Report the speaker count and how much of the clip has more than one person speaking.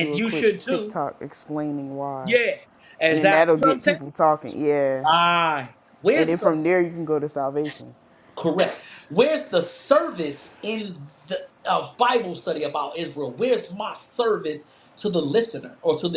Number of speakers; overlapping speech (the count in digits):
2, about 15%